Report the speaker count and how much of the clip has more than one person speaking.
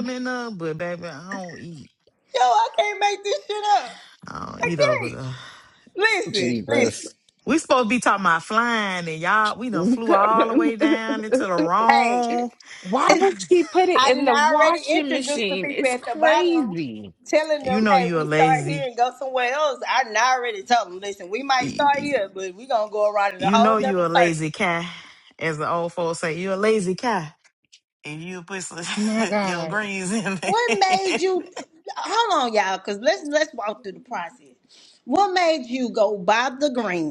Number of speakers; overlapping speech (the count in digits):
3, about 21%